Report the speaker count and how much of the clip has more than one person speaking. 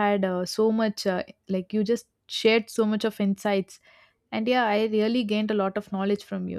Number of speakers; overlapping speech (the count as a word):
one, no overlap